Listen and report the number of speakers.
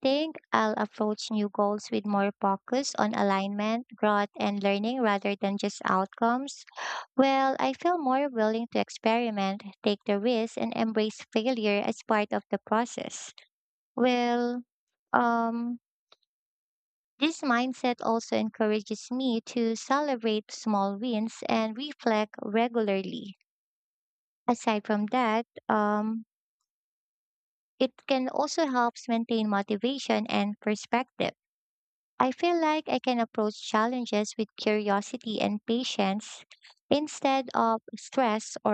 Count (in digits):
1